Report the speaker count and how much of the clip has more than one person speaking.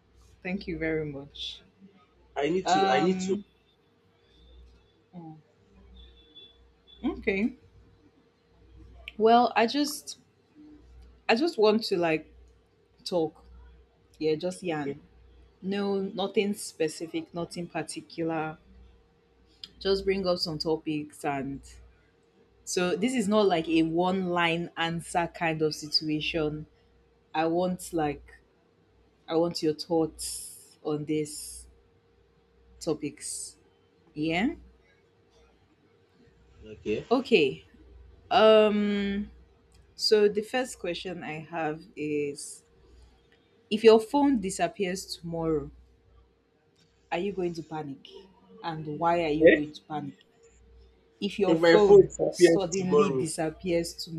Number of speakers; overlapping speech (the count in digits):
2, about 5%